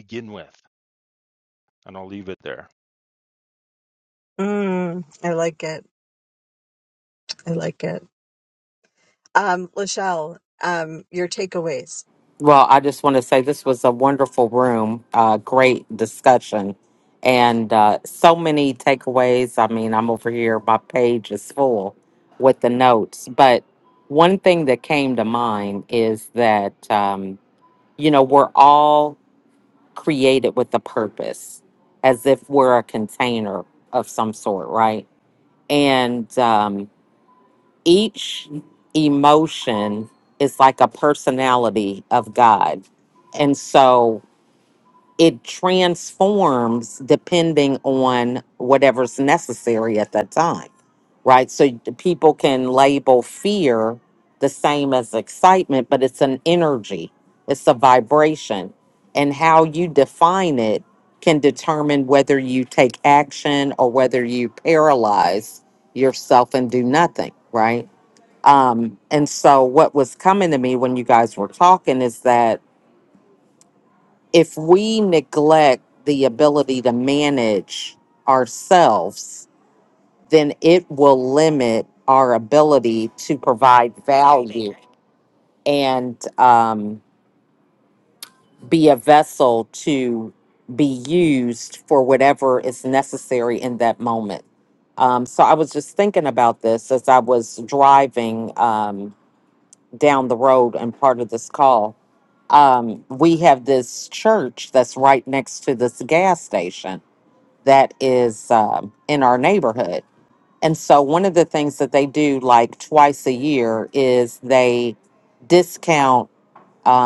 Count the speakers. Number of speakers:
3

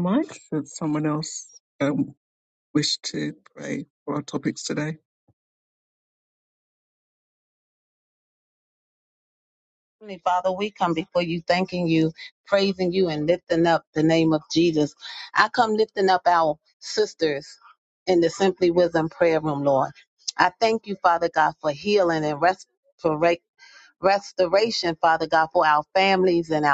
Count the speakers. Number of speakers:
2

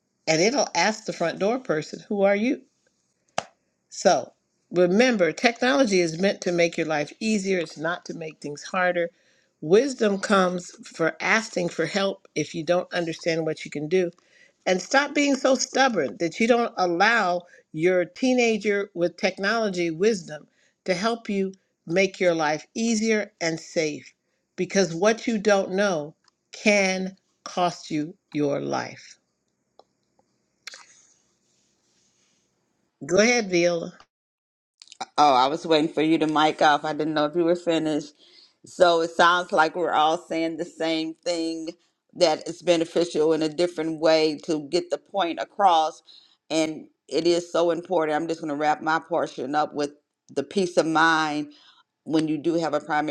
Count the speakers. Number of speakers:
2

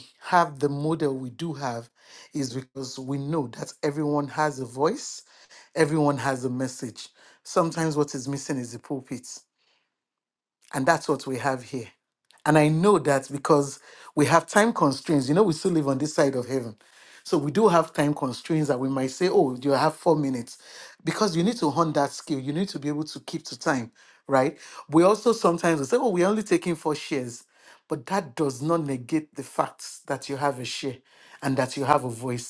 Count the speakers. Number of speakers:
1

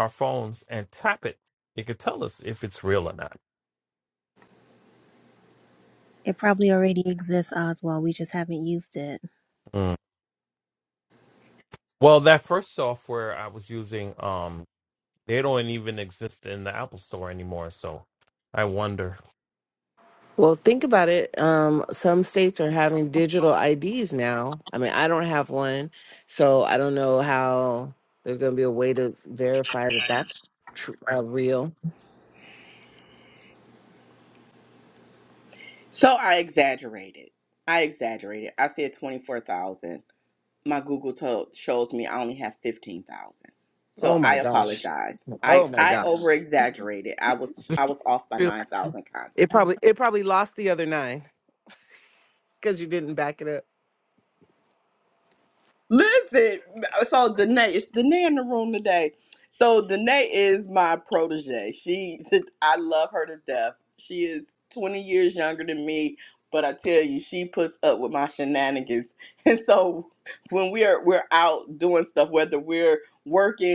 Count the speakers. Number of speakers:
4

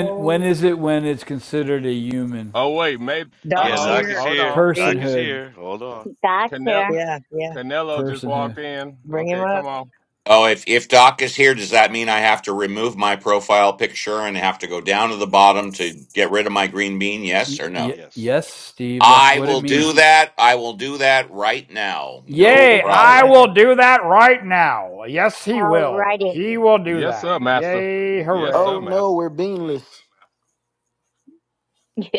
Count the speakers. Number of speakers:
7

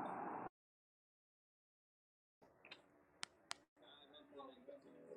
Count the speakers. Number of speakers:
0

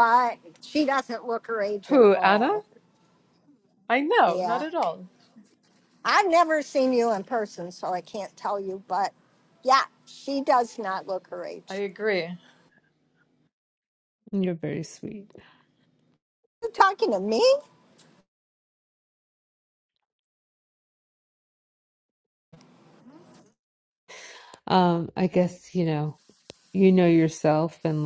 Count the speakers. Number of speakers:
3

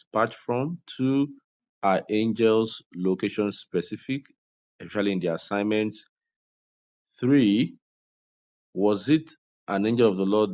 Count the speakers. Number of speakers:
1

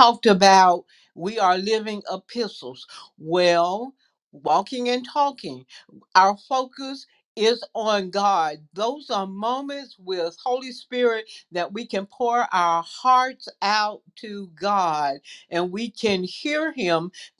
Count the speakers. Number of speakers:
1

